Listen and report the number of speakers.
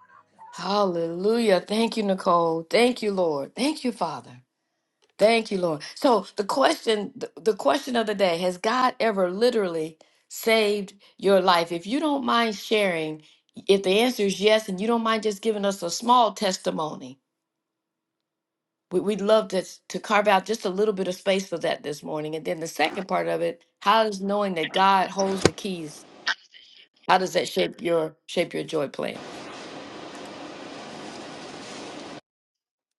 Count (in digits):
1